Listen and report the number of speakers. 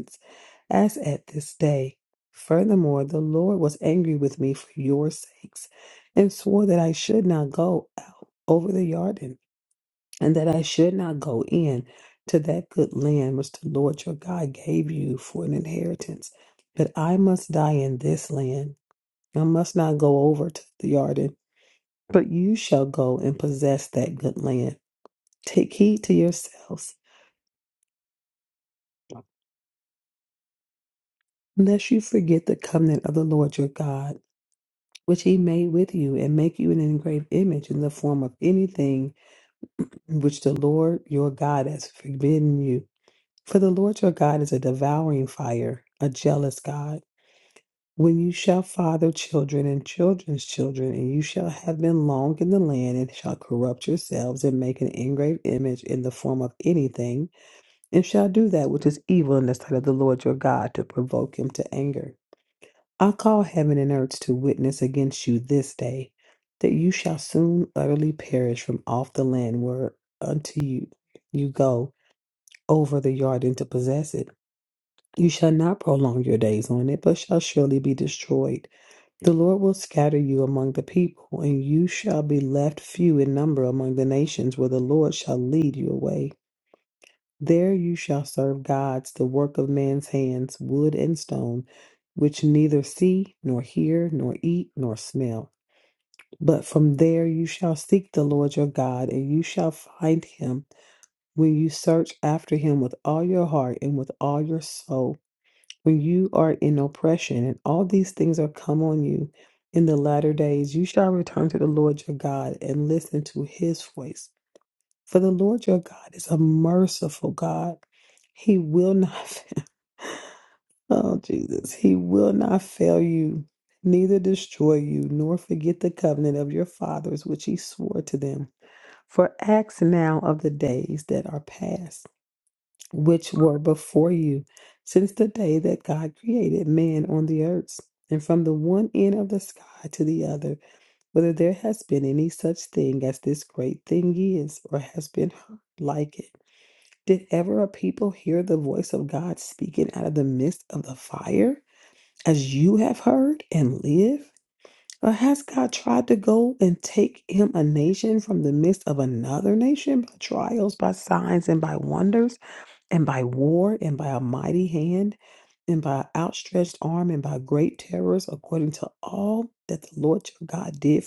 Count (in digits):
1